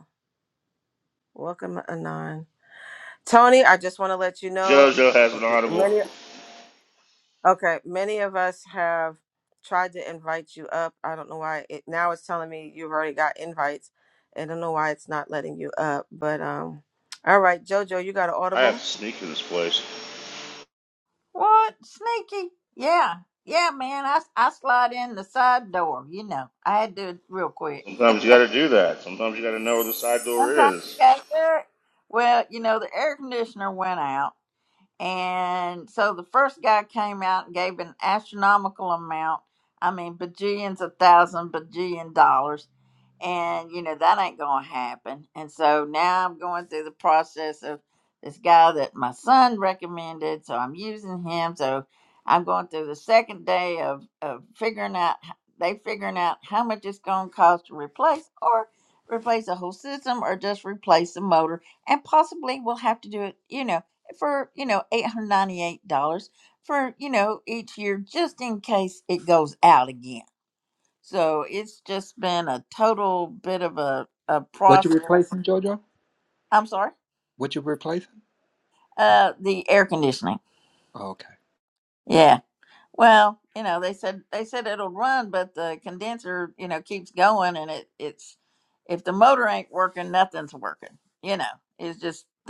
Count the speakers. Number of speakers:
4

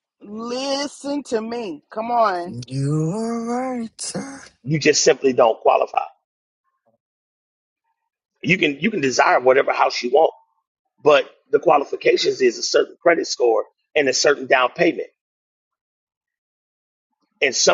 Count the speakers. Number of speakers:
3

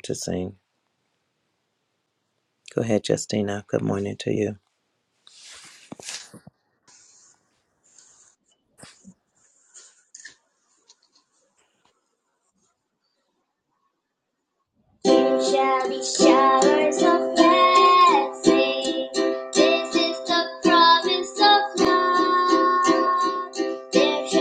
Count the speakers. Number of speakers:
2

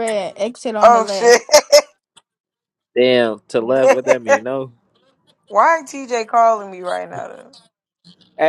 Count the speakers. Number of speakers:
3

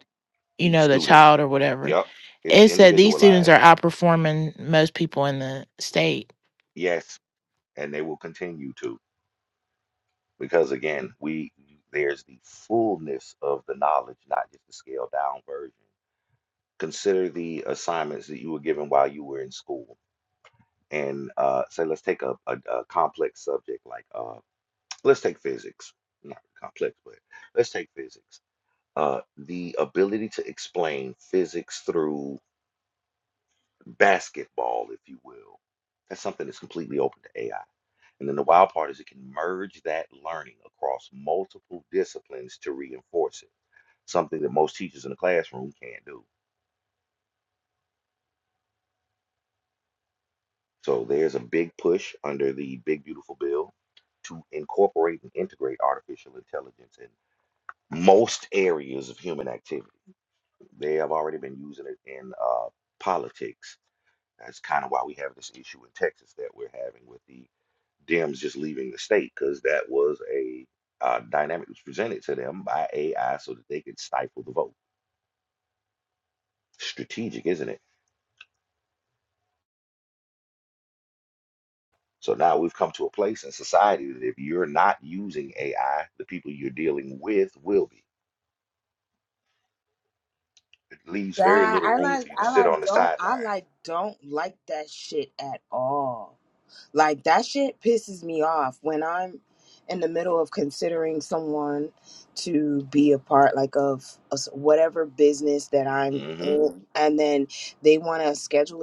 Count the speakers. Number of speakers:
3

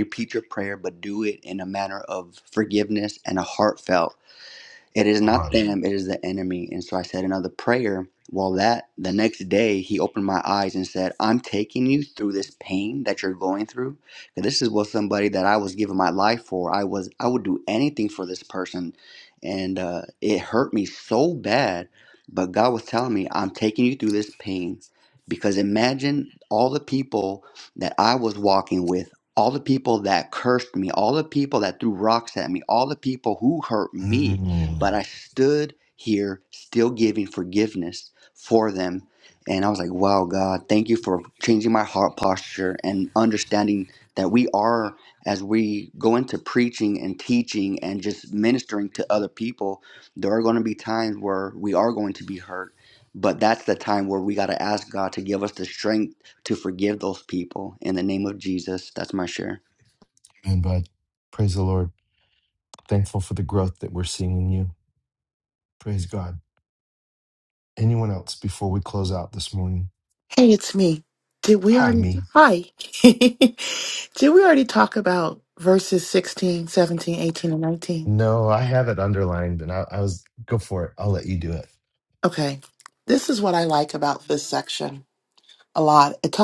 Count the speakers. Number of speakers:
3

